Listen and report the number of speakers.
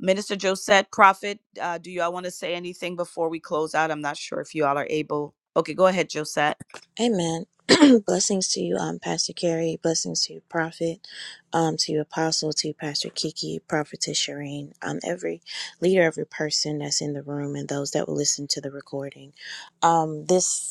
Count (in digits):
2